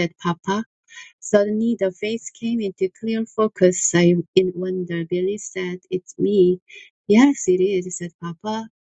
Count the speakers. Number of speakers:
one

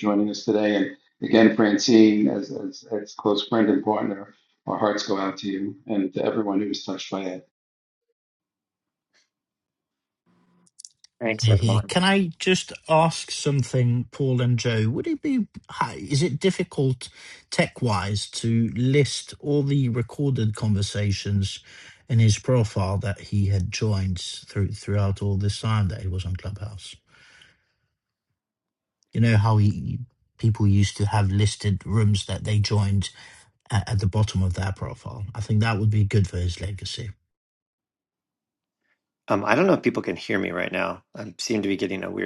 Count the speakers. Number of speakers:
three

